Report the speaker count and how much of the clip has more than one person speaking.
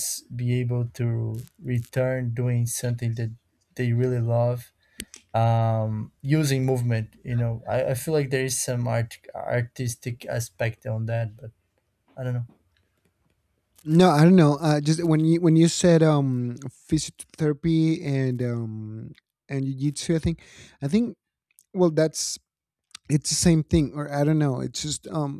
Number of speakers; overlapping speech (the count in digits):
2, no overlap